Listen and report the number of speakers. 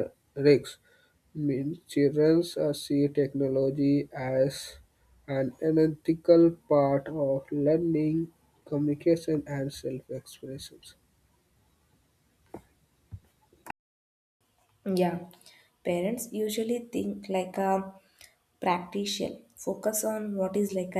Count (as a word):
two